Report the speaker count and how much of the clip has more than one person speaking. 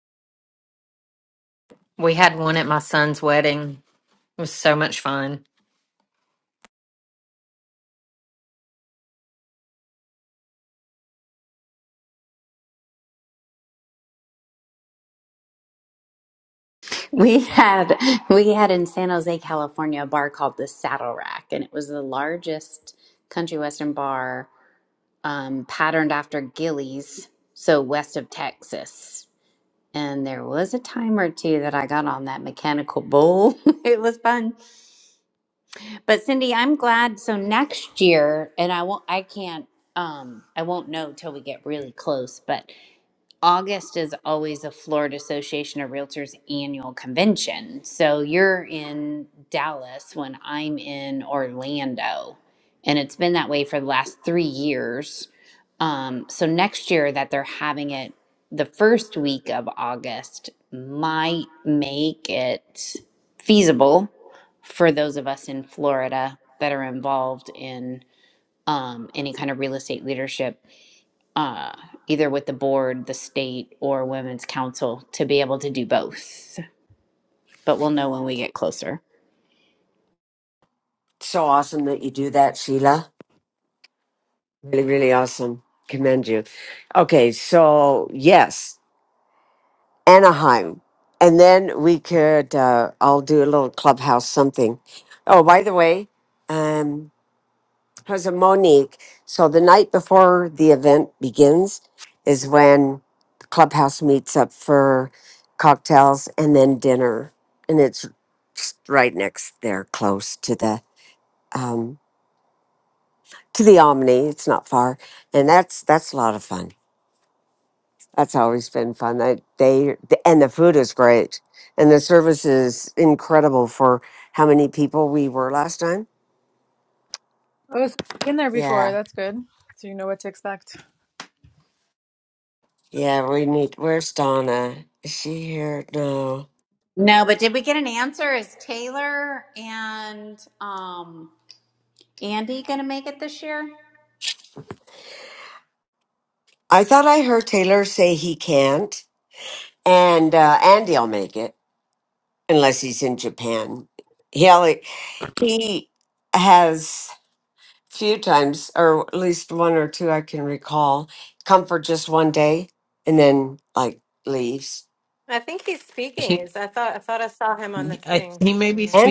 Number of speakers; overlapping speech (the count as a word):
six, about 1%